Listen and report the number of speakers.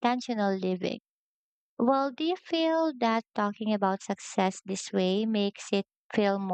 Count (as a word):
one